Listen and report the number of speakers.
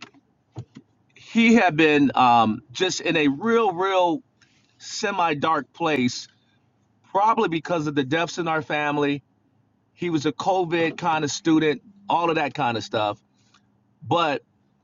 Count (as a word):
one